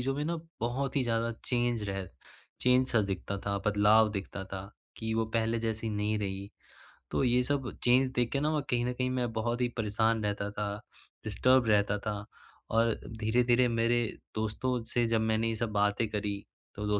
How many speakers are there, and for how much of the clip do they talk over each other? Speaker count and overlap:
1, no overlap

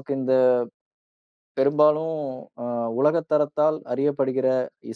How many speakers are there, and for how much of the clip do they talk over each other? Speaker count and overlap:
1, no overlap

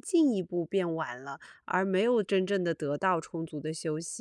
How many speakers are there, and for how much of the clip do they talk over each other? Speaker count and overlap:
1, no overlap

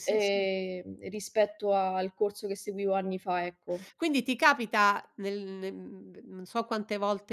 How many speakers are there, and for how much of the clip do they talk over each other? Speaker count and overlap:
2, about 5%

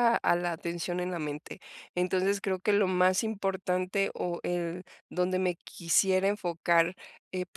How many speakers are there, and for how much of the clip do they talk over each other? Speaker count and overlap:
1, no overlap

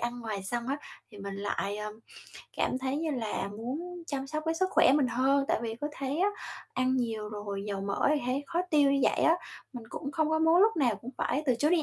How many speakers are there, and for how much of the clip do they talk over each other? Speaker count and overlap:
1, no overlap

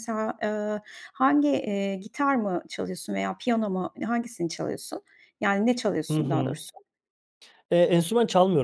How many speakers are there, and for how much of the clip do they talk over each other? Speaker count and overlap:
2, about 4%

